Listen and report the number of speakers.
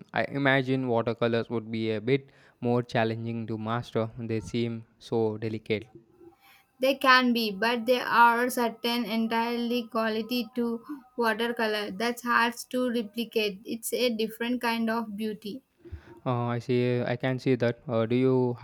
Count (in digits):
2